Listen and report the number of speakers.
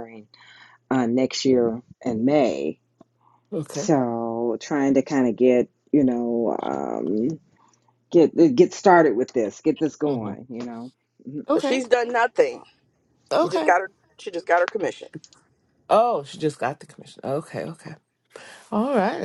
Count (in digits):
3